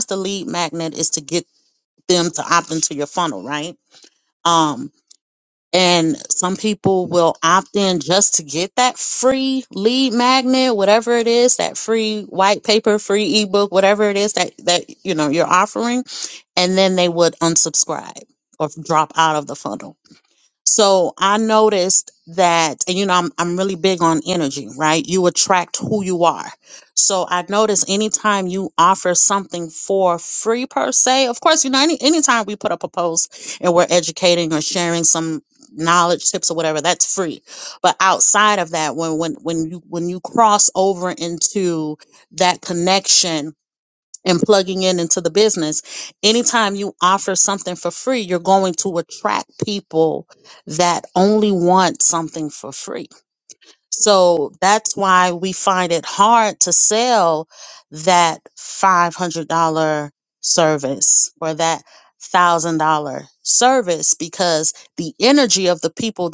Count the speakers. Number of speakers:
1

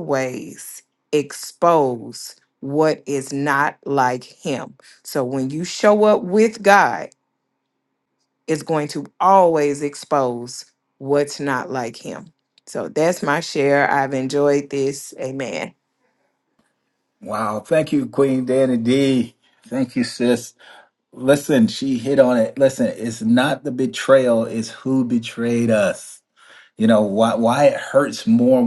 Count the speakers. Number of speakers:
2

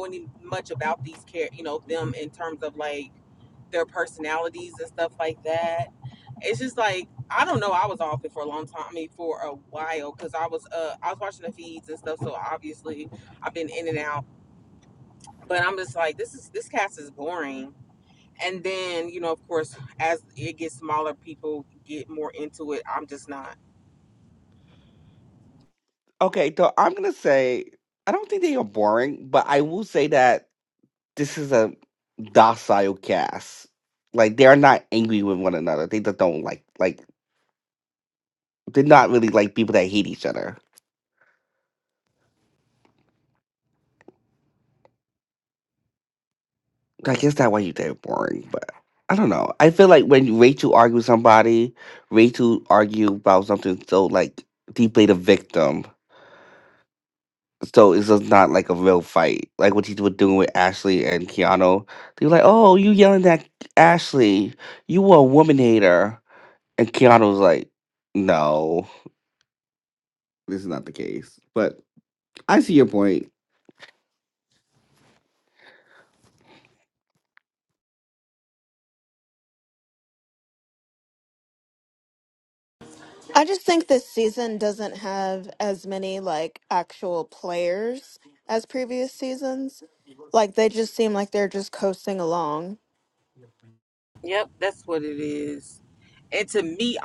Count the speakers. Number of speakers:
3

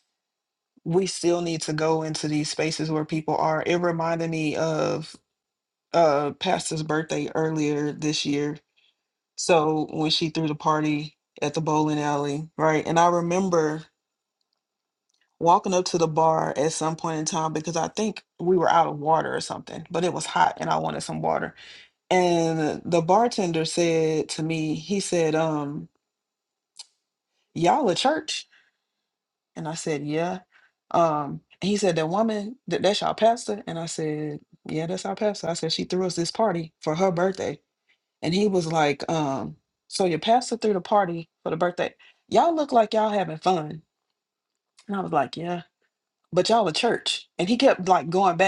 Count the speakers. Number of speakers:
1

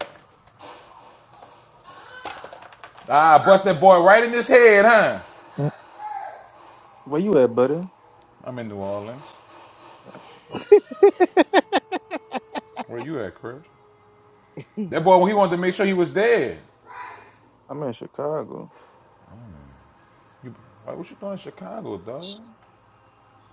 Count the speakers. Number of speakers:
2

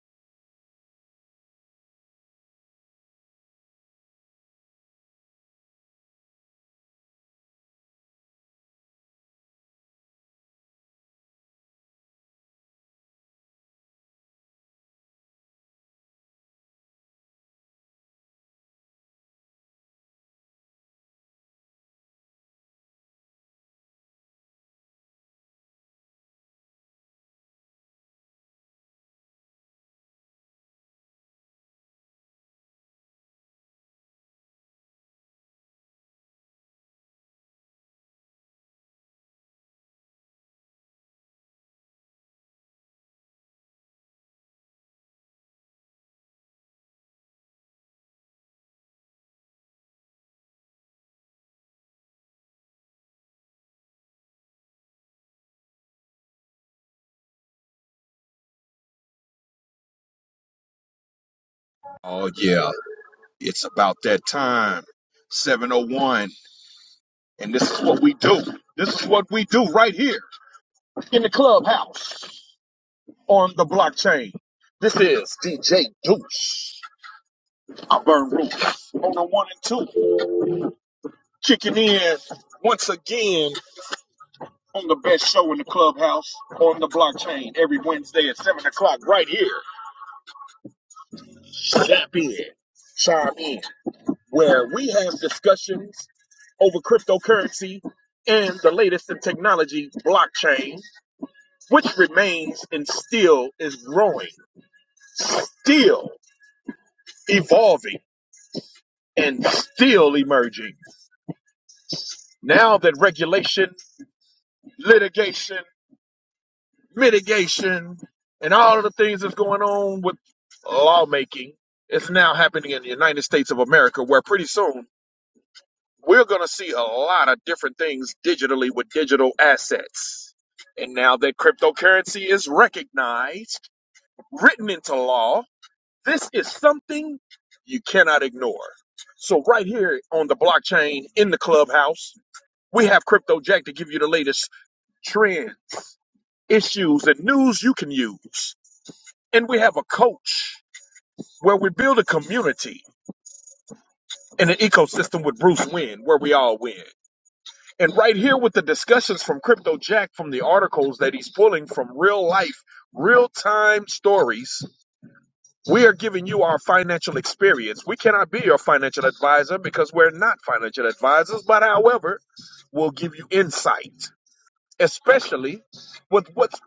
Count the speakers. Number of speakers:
1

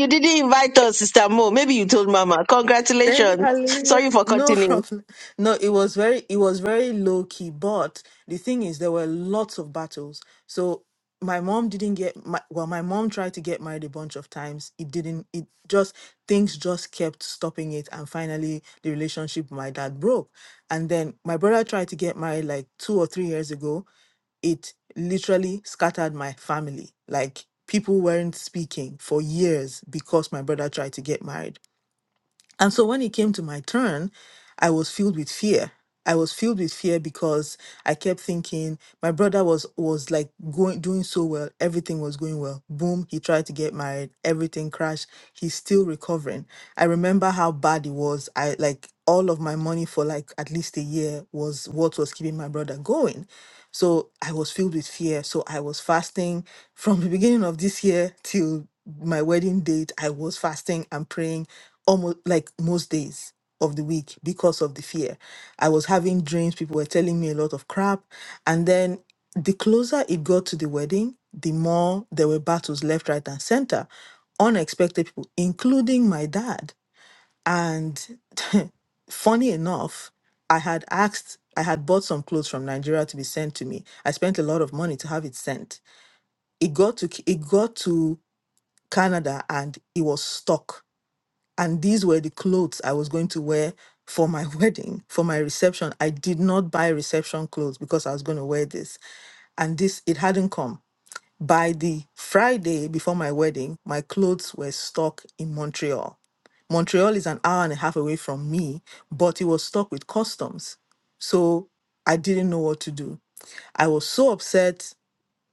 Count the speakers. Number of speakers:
2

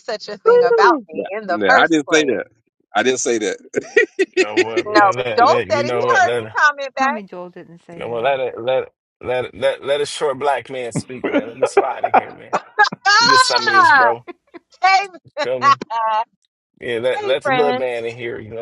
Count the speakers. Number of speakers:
4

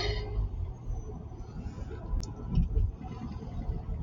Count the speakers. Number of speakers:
0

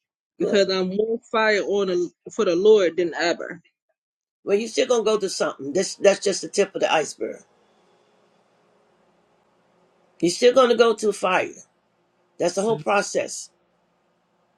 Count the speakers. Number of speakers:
2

